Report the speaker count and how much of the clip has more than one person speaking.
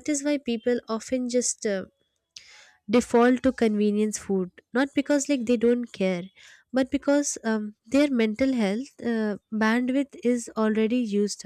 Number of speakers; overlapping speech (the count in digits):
1, no overlap